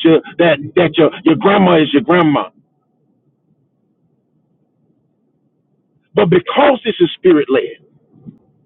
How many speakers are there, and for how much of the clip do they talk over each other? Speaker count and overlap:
1, no overlap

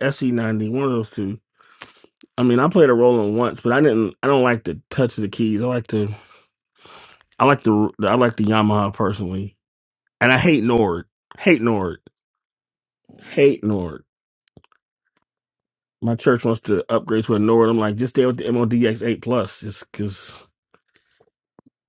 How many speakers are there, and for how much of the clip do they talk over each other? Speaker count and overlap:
1, no overlap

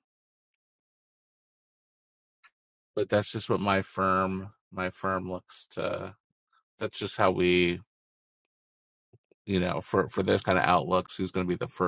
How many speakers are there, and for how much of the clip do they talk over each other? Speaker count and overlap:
1, no overlap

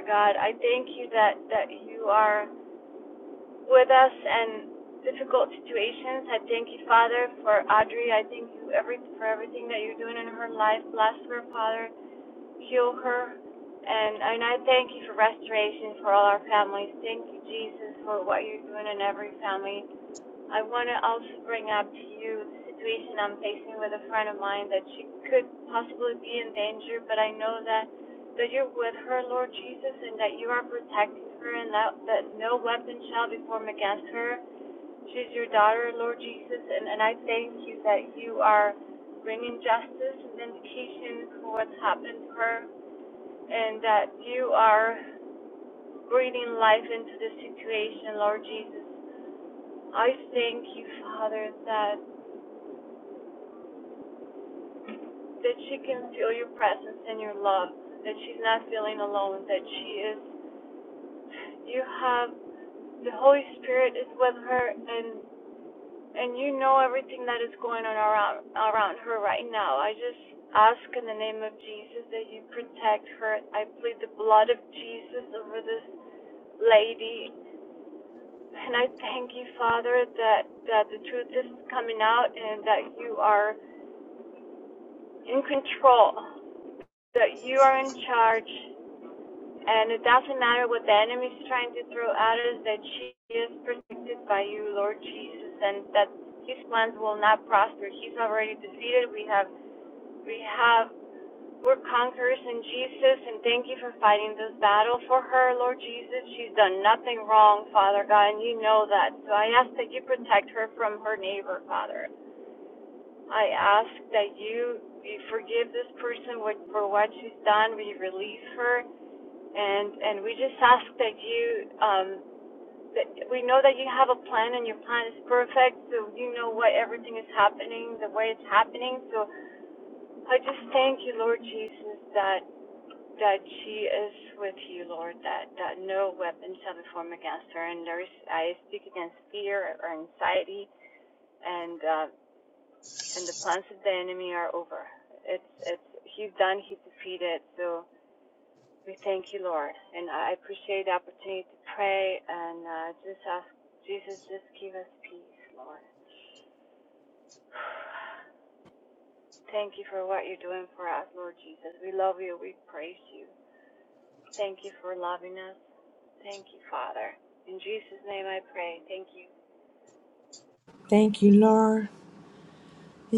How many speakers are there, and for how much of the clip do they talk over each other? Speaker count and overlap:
2, no overlap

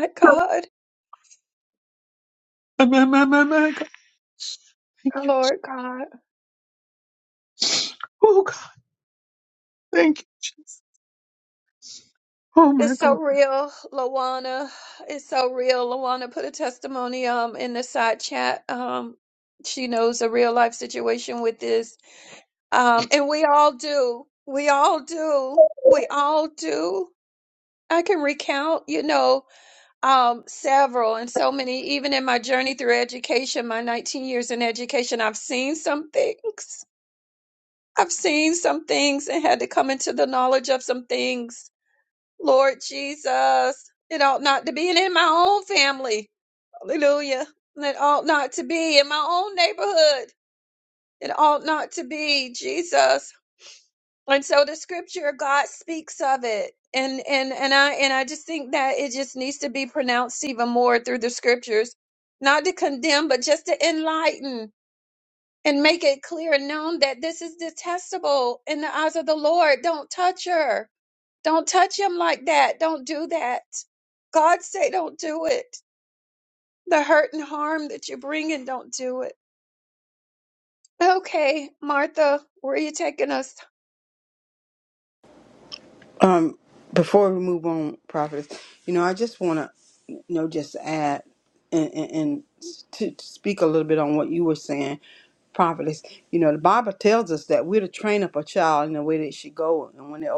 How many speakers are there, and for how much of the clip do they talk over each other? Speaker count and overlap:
3, about 1%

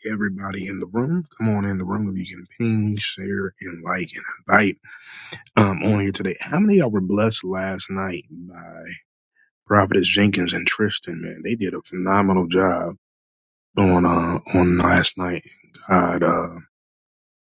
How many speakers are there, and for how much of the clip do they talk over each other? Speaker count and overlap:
1, no overlap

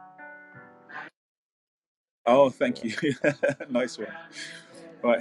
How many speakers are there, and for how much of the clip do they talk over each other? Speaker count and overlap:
1, no overlap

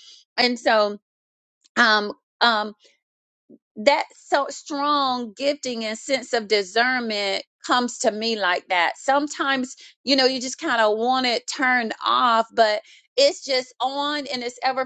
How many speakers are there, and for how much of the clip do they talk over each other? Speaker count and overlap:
1, no overlap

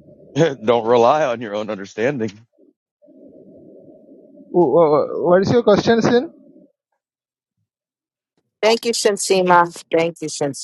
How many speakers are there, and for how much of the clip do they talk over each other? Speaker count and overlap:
3, no overlap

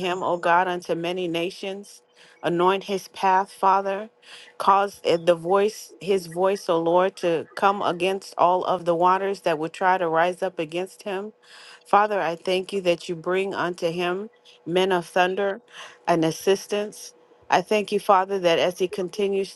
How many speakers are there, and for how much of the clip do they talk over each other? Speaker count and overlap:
1, no overlap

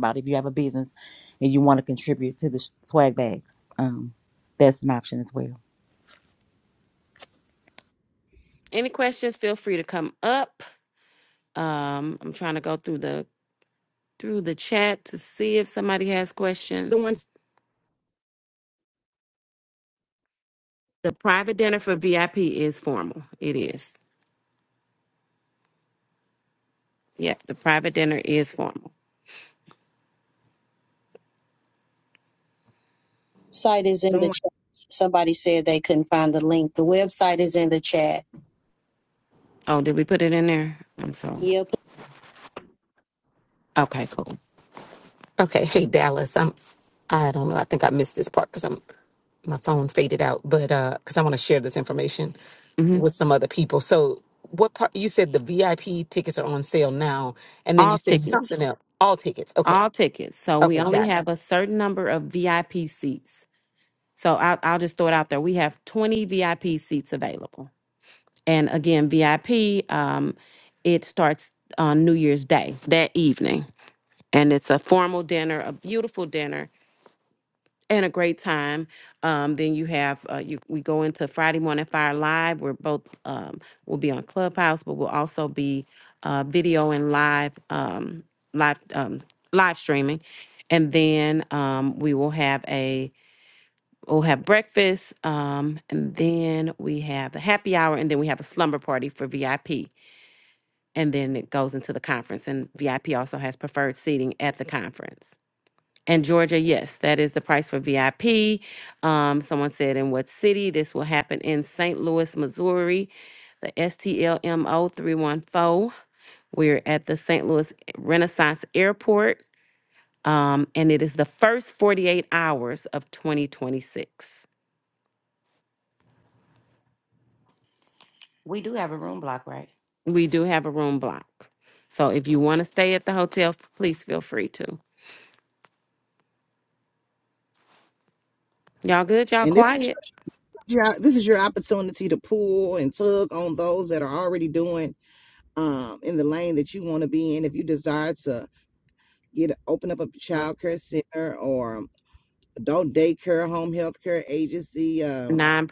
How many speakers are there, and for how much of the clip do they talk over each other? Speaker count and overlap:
6, about 1%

